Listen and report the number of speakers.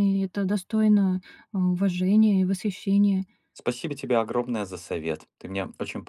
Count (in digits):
2